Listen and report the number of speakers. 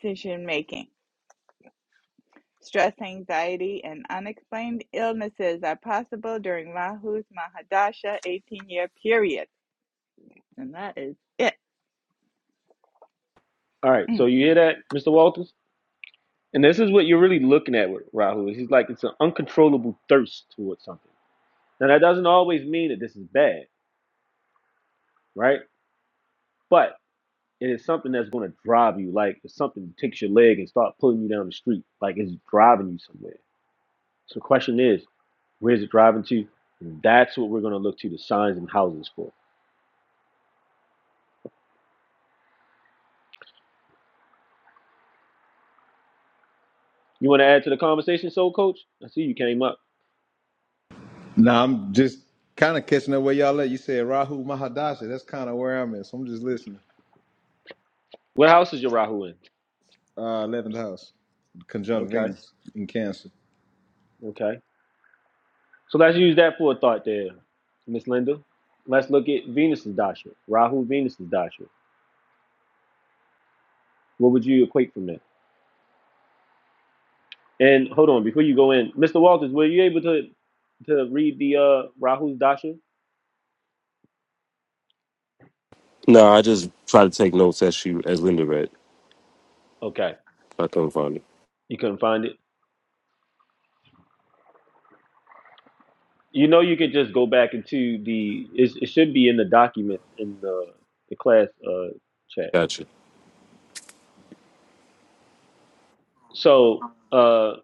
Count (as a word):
four